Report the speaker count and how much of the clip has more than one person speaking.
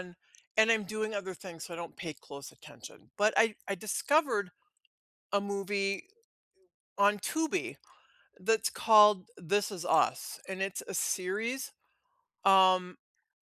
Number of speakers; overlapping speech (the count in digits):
1, no overlap